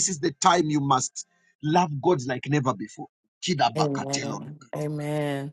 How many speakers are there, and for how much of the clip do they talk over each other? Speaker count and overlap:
2, no overlap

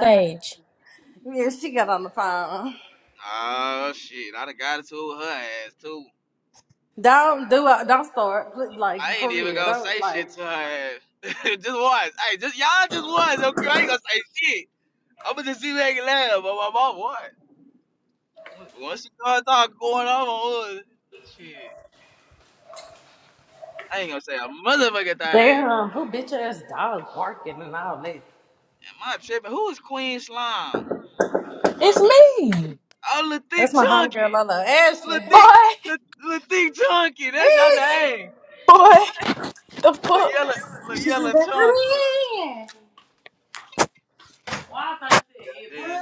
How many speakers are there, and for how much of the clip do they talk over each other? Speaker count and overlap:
3, about 11%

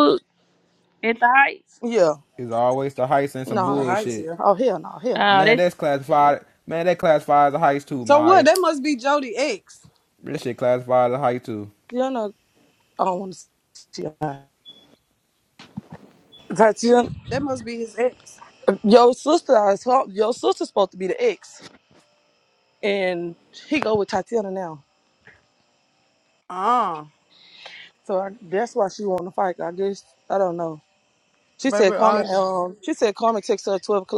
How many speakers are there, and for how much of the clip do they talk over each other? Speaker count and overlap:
4, about 7%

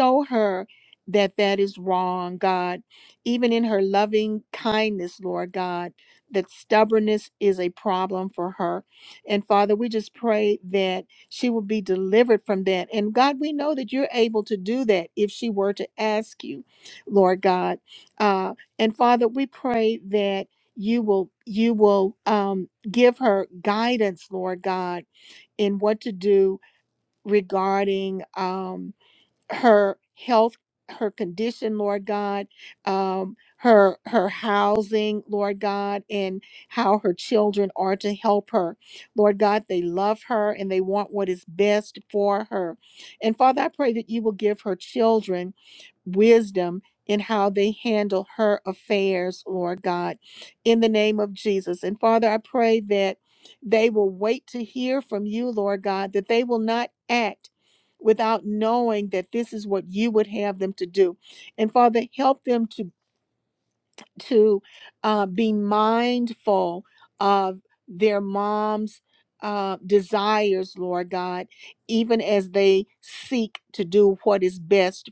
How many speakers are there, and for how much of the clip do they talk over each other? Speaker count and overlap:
1, no overlap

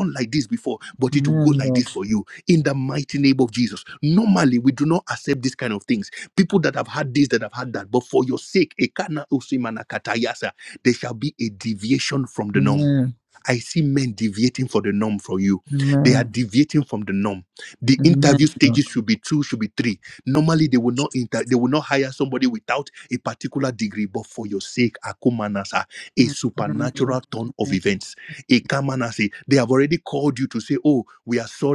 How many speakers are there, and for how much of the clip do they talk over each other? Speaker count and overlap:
2, about 6%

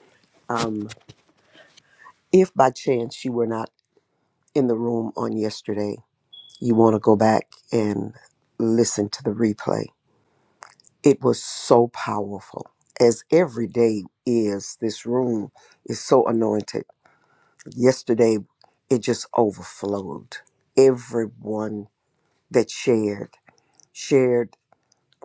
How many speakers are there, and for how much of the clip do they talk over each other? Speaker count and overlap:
1, no overlap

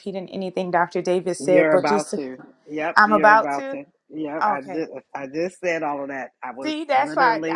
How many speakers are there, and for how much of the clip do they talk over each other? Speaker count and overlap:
2, about 39%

